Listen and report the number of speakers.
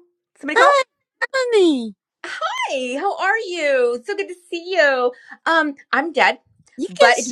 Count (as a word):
two